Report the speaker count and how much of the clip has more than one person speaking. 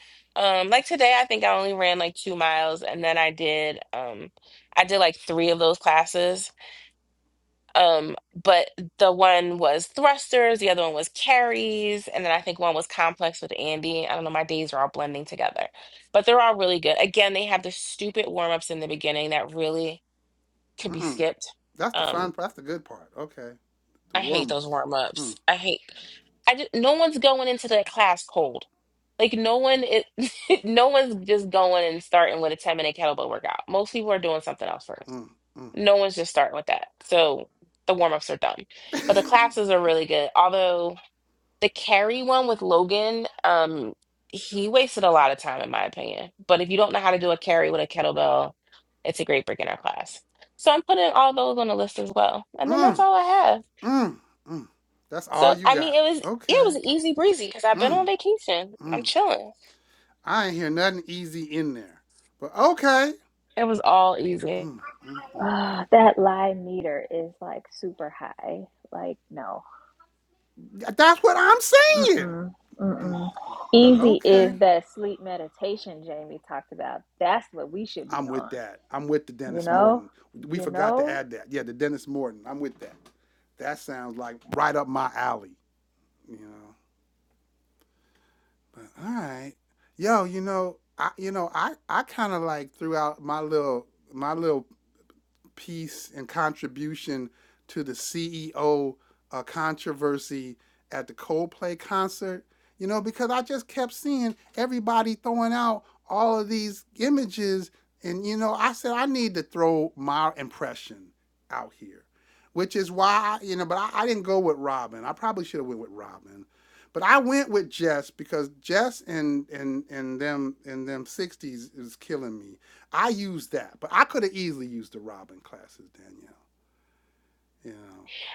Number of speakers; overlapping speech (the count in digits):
3, about 5%